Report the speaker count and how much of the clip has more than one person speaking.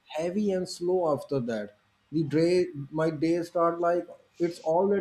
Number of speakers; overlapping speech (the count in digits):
1, no overlap